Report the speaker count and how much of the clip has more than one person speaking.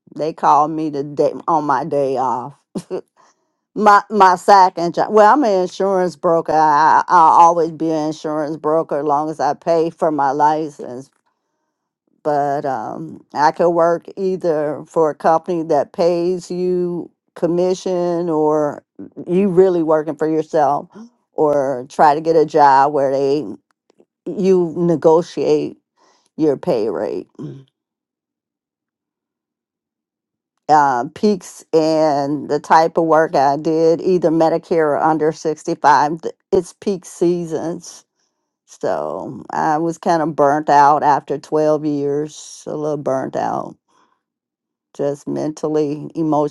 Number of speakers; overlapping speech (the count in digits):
1, no overlap